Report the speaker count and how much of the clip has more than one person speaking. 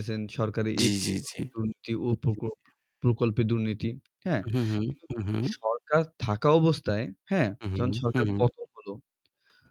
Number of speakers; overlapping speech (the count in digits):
2, about 17%